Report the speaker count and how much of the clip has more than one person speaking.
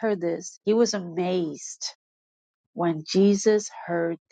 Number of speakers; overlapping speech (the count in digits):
1, no overlap